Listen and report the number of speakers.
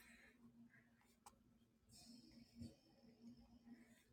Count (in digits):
0